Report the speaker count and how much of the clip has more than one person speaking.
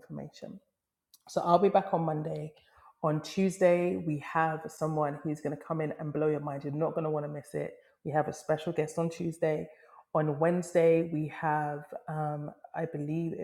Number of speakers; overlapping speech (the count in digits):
1, no overlap